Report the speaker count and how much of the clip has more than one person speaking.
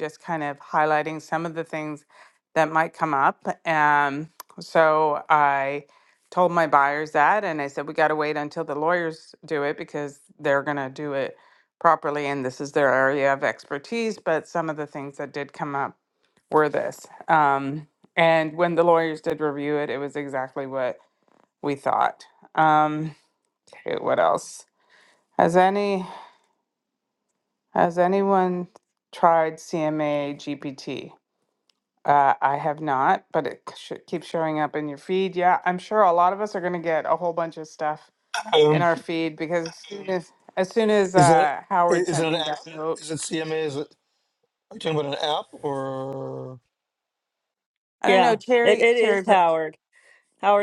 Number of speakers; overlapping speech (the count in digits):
3, about 5%